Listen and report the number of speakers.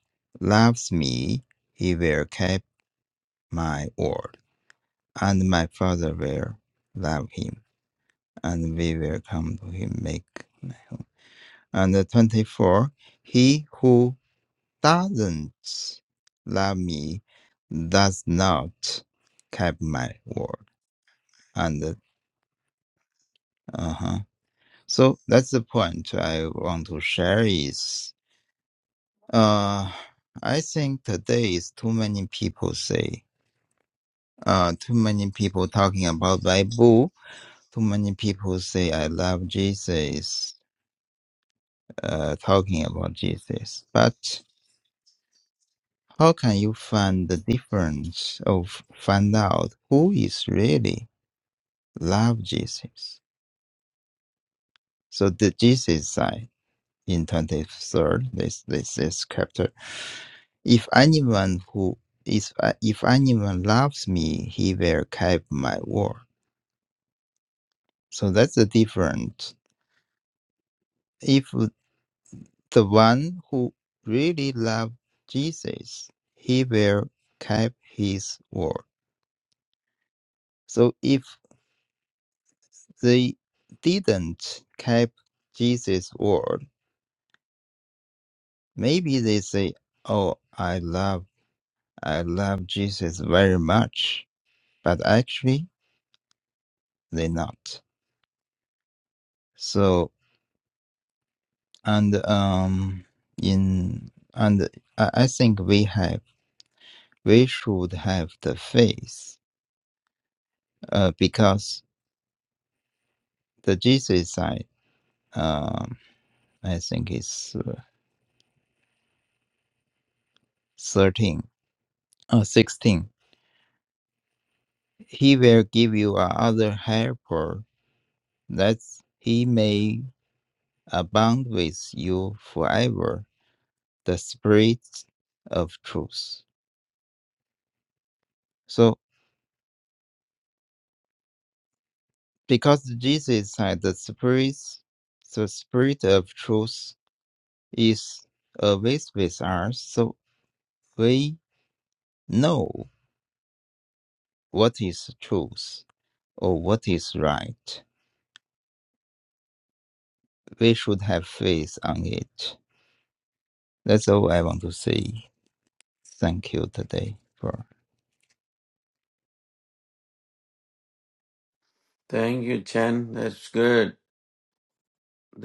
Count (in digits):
2